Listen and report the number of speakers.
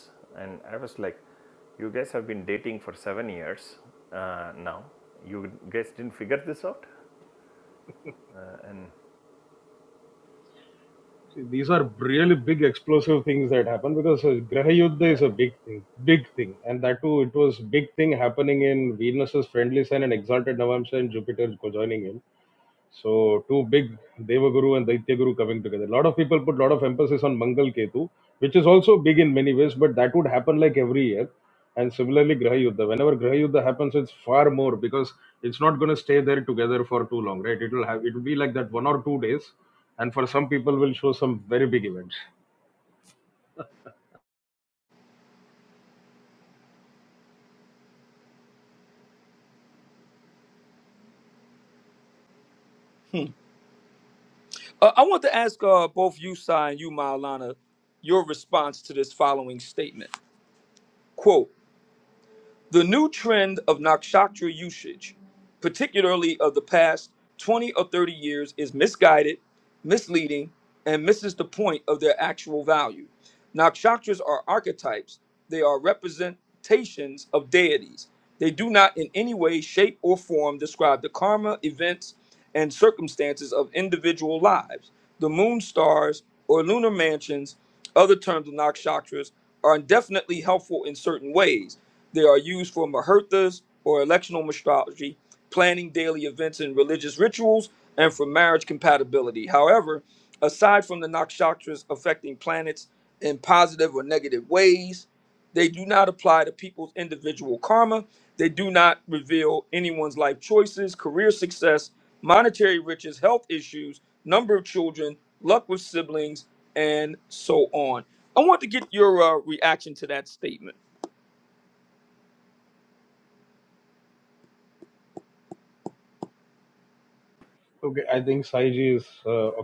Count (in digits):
3